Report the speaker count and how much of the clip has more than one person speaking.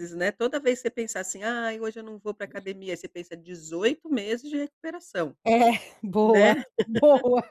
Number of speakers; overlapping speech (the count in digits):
2, about 5%